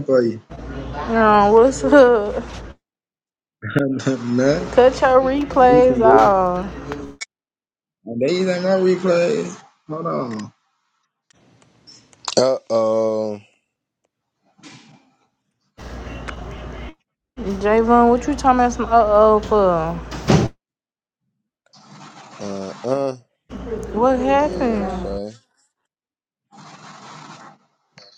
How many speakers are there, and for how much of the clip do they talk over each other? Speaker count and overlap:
3, about 4%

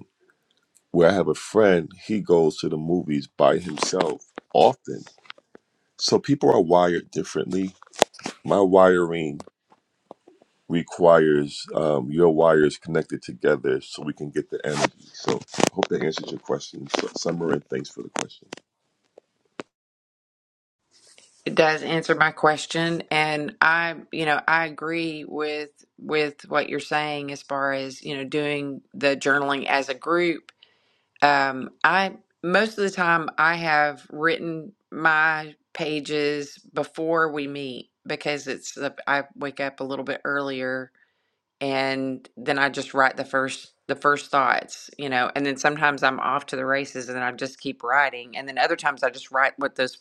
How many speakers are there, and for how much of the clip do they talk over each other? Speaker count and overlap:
2, no overlap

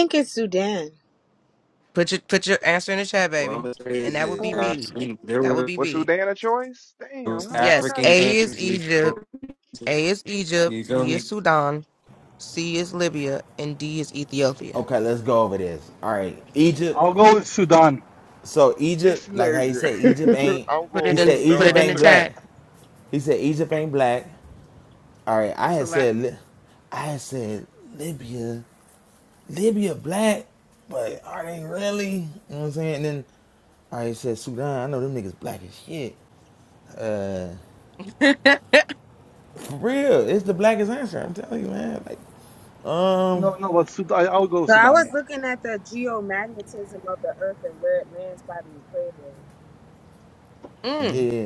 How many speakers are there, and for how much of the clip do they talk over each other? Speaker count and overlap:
6, about 16%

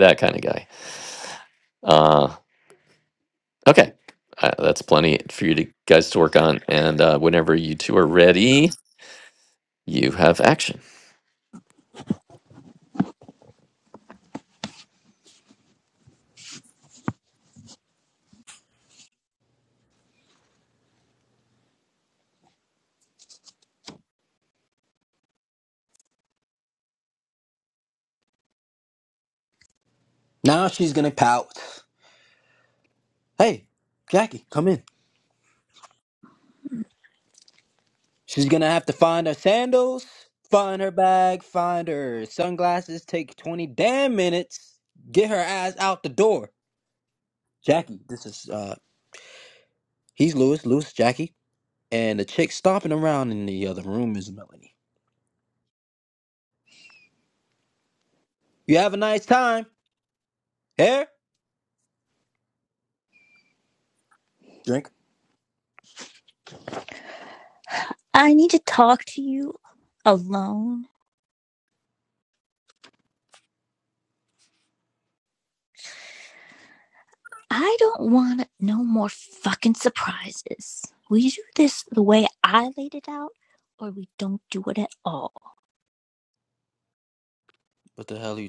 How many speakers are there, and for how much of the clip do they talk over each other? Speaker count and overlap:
3, no overlap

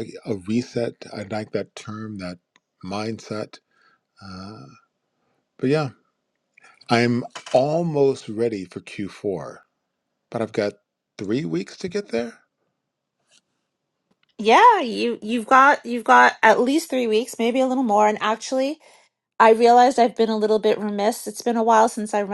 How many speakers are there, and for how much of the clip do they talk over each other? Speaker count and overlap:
2, no overlap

